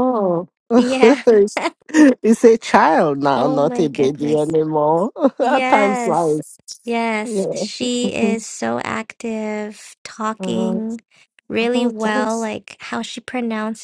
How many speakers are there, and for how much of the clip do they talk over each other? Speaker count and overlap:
2, about 30%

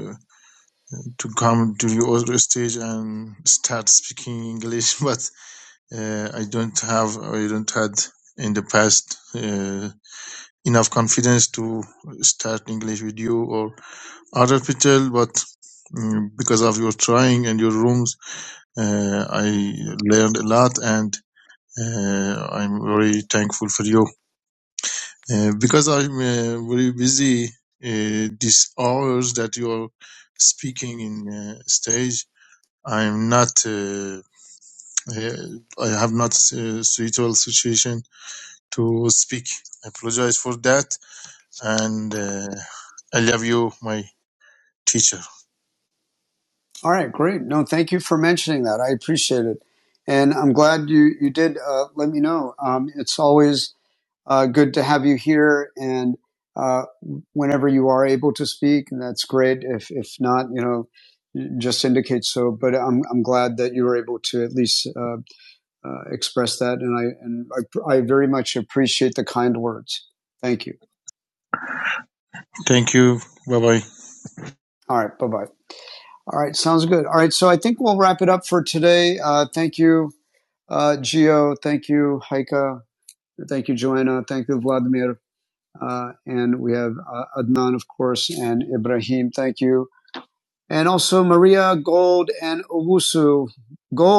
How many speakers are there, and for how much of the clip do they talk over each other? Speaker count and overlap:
2, no overlap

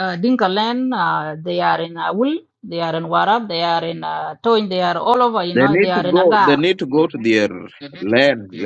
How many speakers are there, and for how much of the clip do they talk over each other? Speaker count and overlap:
2, about 12%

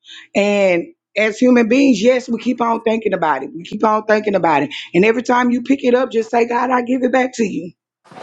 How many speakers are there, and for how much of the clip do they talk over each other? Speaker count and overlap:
1, no overlap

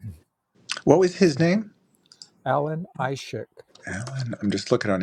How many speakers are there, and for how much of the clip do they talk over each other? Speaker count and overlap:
2, about 1%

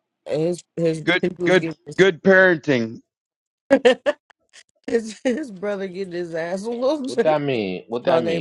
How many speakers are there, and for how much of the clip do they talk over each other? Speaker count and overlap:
3, about 14%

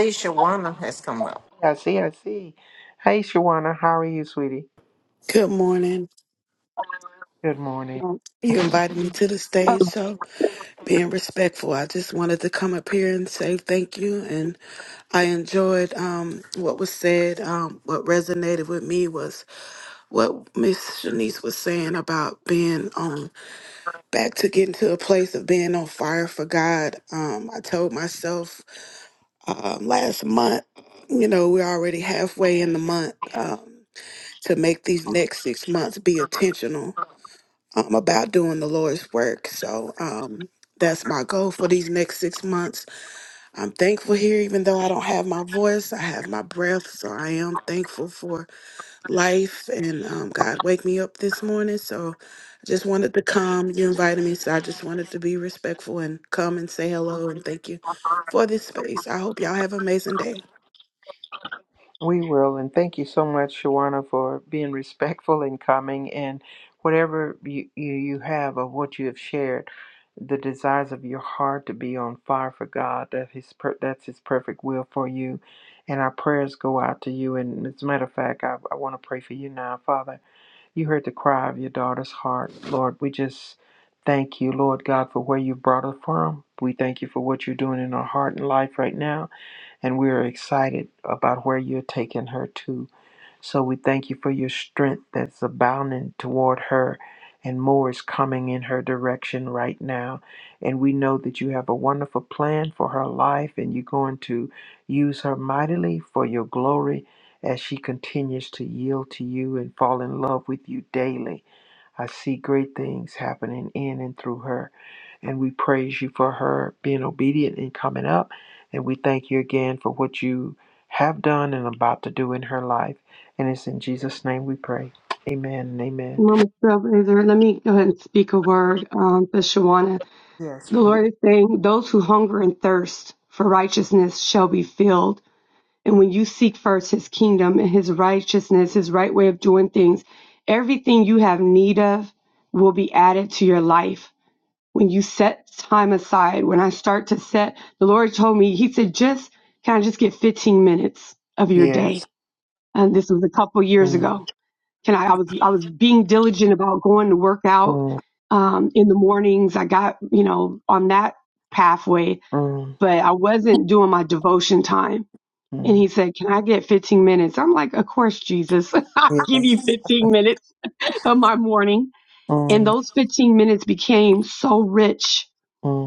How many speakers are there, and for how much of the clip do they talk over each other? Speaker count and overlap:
4, about 1%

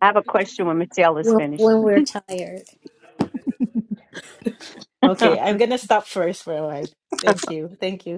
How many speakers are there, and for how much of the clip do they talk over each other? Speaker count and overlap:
3, about 7%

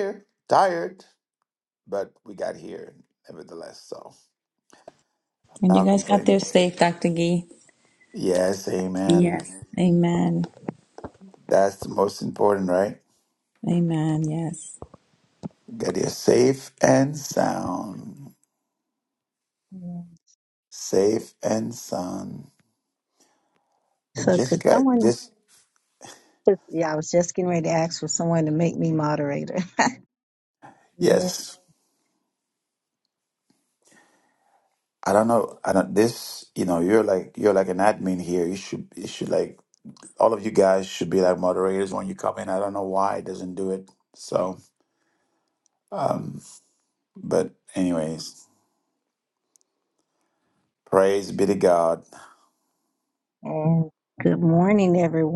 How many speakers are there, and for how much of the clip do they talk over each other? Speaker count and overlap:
3, about 4%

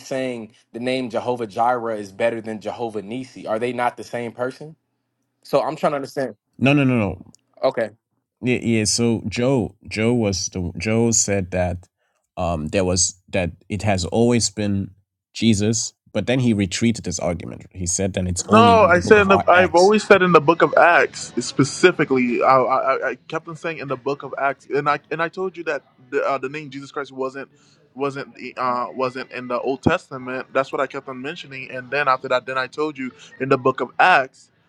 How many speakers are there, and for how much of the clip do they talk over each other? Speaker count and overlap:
3, about 4%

